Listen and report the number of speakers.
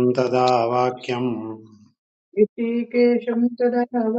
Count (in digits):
2